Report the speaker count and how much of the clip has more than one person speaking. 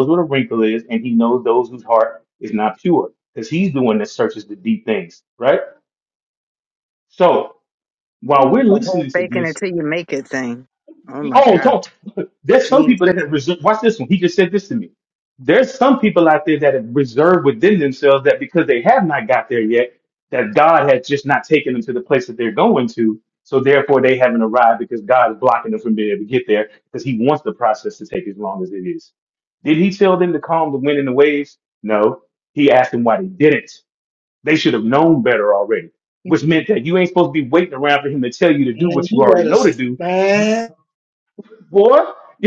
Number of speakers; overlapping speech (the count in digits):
3, about 8%